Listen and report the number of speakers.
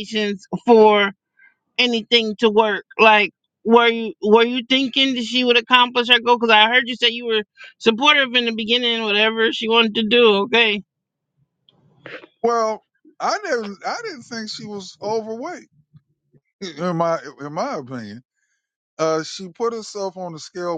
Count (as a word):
two